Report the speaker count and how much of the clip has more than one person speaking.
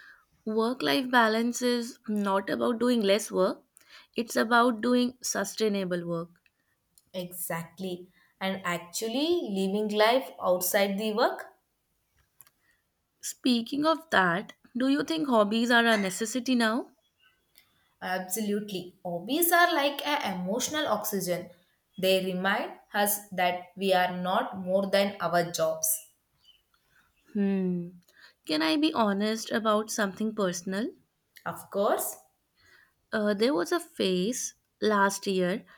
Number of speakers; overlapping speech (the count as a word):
two, no overlap